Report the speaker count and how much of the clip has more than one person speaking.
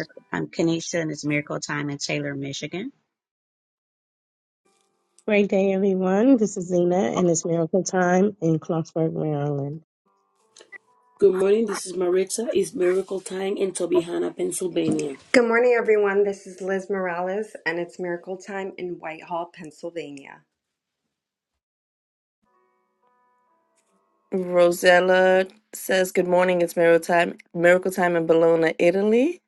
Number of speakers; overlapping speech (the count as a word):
five, no overlap